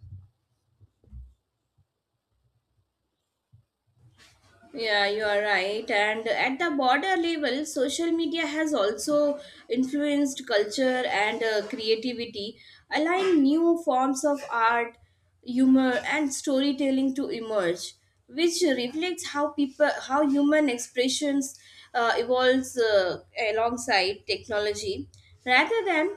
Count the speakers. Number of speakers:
one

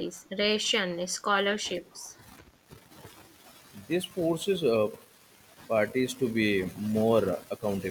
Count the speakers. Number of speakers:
two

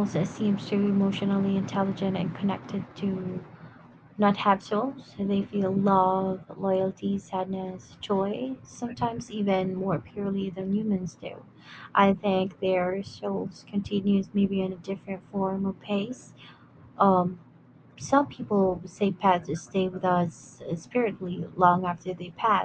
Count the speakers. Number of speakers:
one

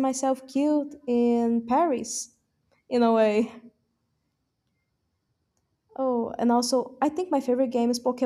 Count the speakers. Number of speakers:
one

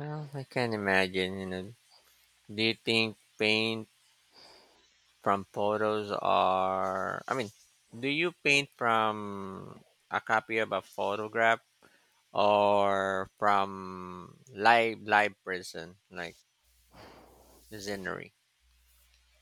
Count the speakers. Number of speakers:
one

